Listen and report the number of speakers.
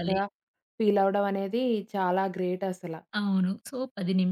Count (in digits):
2